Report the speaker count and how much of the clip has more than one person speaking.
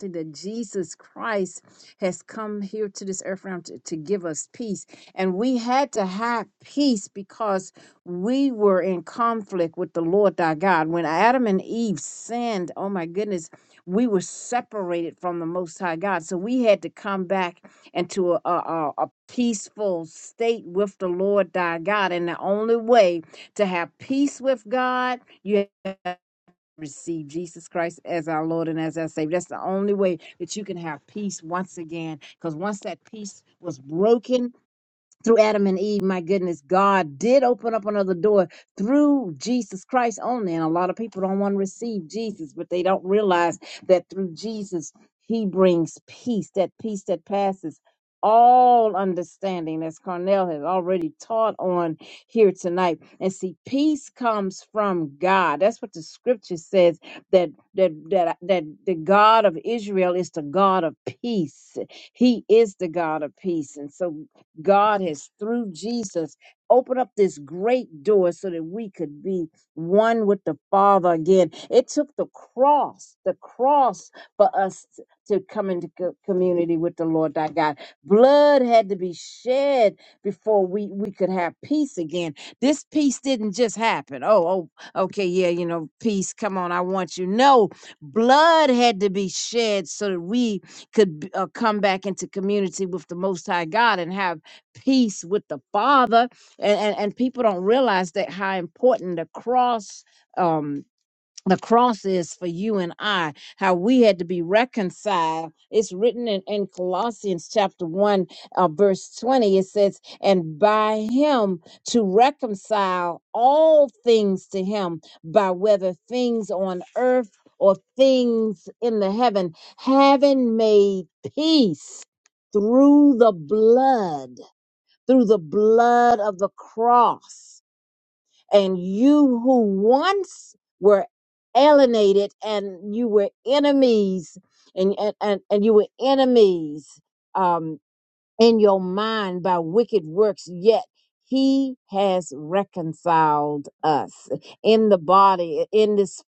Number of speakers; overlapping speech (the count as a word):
one, no overlap